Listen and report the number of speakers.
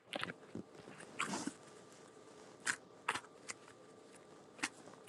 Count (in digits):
0